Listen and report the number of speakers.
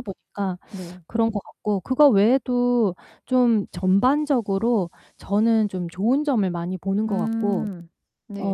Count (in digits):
2